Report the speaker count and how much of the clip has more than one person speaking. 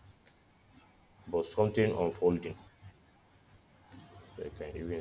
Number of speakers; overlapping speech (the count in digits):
1, no overlap